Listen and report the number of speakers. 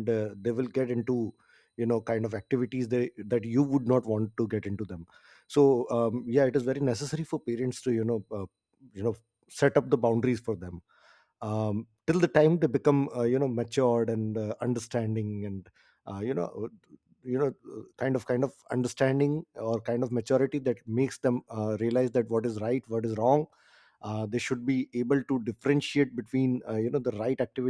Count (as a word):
one